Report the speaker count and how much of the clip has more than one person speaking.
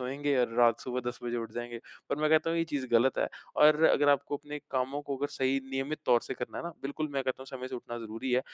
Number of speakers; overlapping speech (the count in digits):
1, no overlap